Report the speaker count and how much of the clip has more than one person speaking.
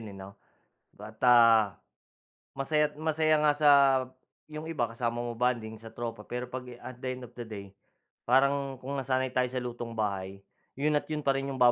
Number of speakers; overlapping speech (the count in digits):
1, no overlap